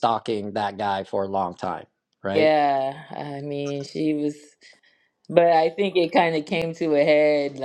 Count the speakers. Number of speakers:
2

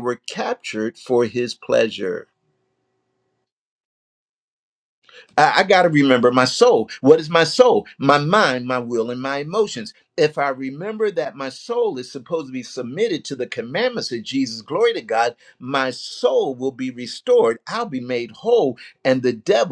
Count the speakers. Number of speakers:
1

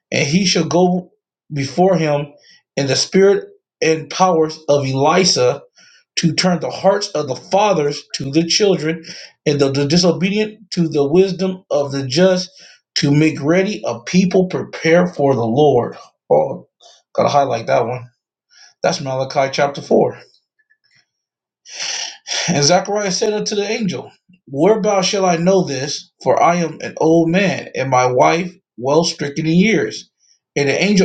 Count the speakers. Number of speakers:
1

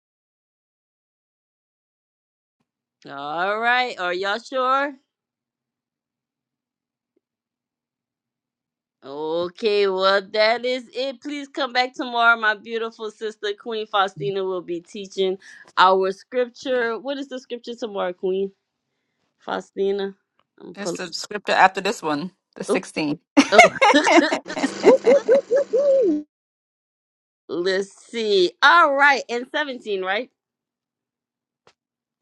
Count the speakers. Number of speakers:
3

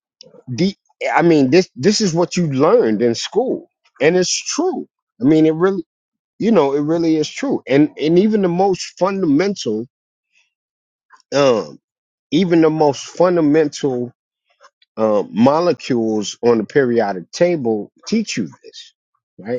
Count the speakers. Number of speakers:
1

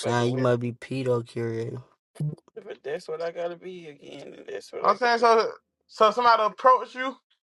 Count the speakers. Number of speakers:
3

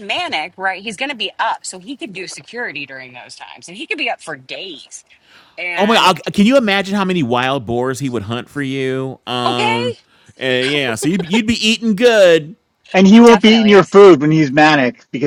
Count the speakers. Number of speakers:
3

